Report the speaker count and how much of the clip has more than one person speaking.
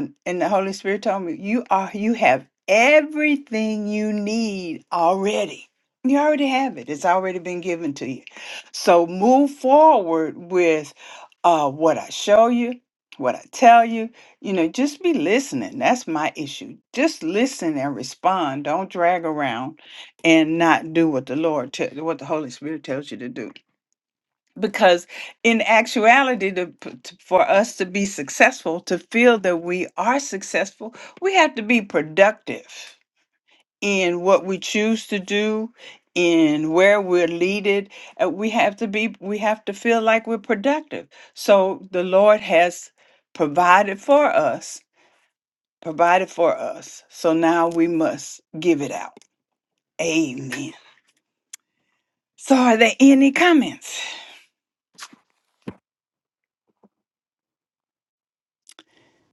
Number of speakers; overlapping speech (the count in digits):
1, no overlap